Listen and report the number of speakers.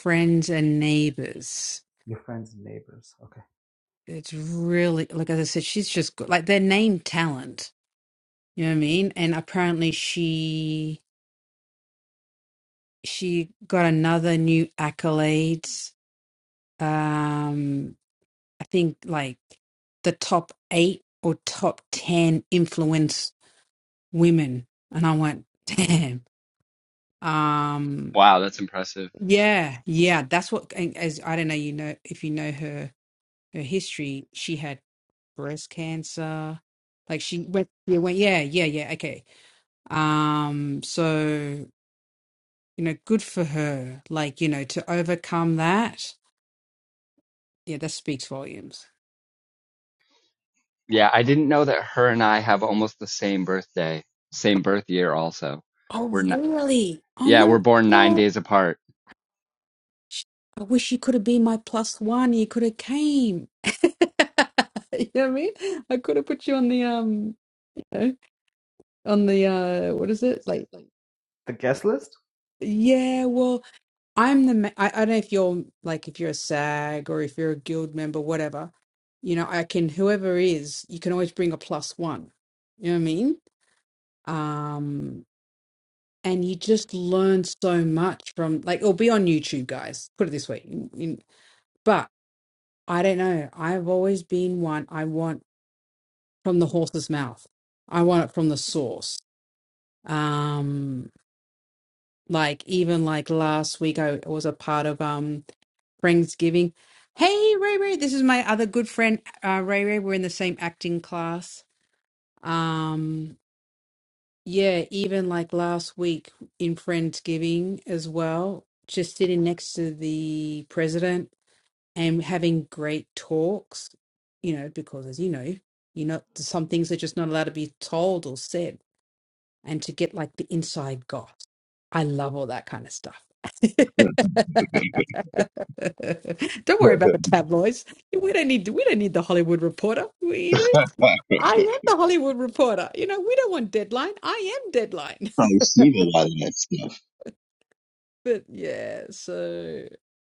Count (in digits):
4